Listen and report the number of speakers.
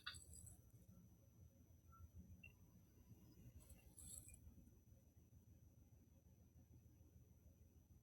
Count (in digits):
0